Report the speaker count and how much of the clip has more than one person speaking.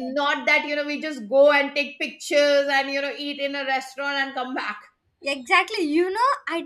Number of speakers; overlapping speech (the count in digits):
2, under 1%